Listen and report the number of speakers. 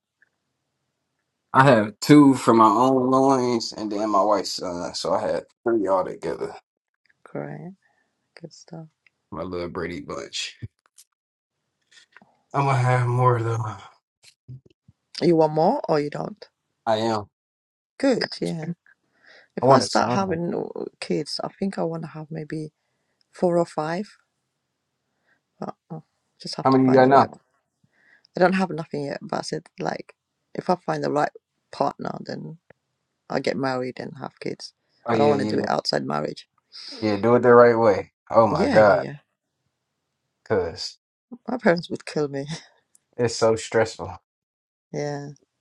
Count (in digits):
2